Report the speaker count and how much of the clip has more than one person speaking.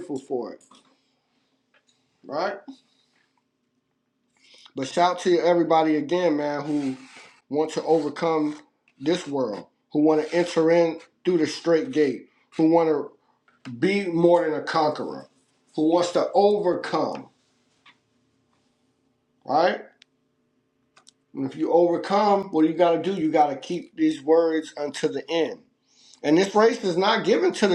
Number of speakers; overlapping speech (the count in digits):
1, no overlap